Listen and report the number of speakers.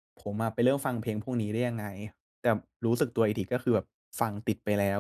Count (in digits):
1